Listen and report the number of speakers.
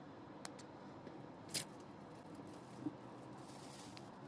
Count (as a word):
zero